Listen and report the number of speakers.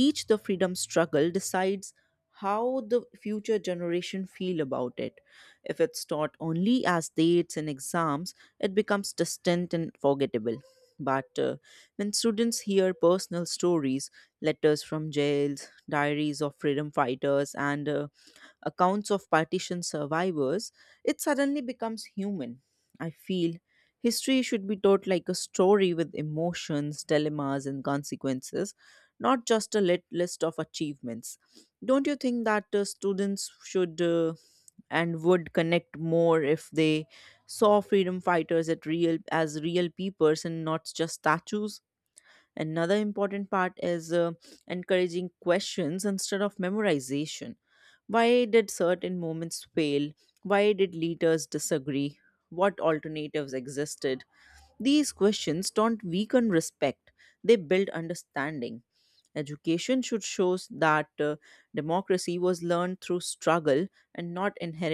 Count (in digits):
1